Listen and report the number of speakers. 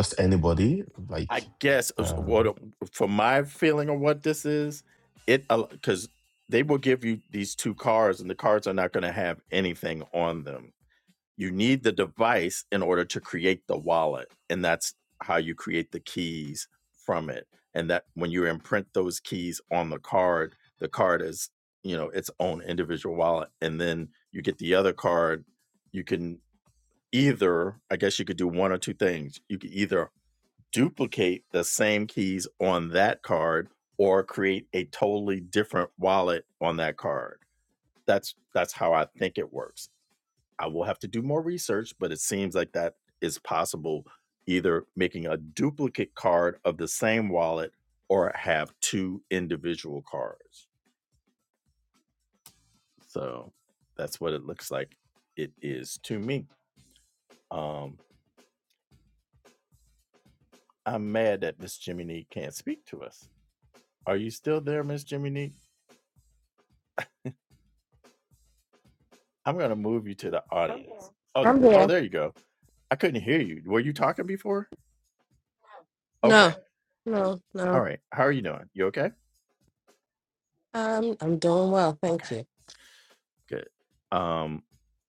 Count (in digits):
3